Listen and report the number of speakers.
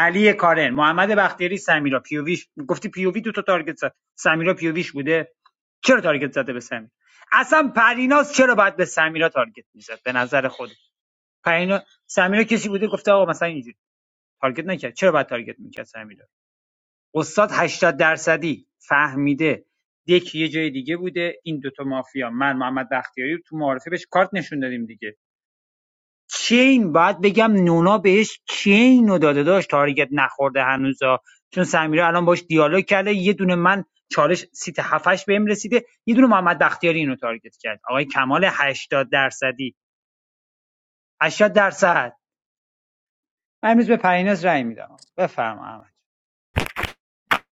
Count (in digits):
1